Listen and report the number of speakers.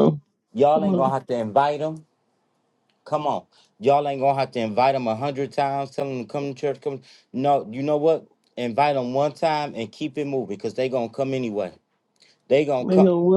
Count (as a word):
two